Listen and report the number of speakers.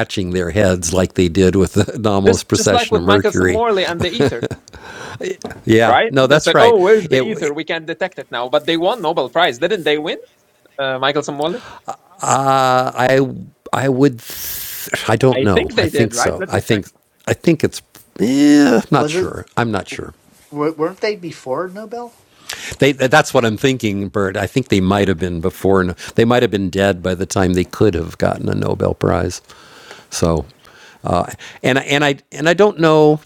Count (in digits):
3